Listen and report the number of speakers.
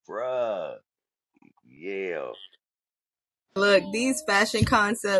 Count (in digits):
2